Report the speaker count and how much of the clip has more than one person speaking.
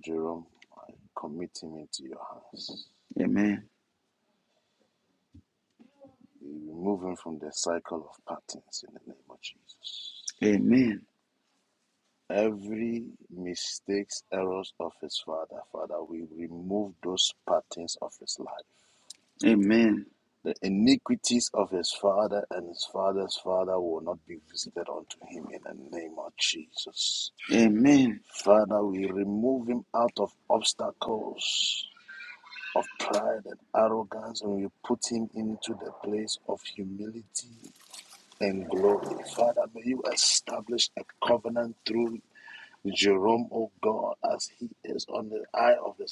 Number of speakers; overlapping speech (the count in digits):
2, no overlap